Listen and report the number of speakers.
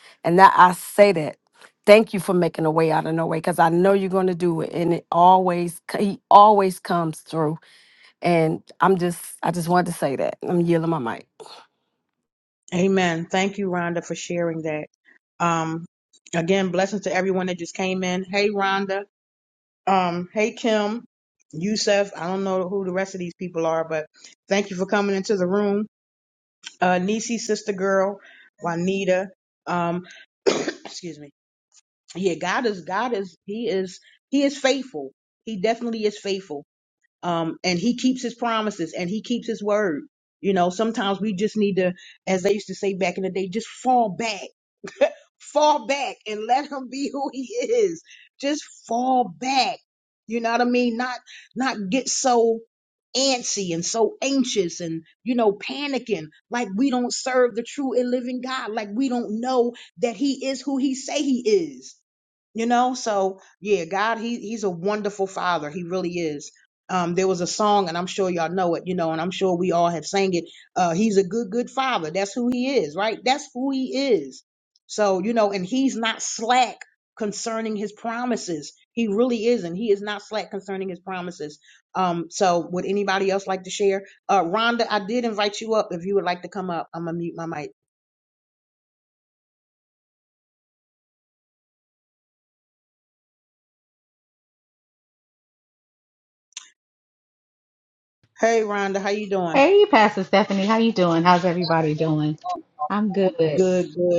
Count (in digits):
3